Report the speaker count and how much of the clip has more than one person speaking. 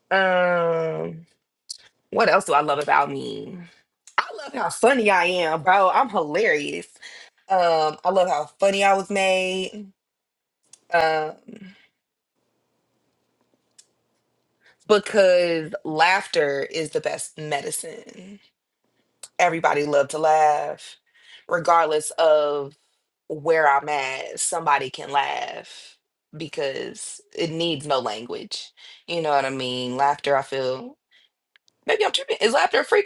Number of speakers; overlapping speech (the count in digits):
1, no overlap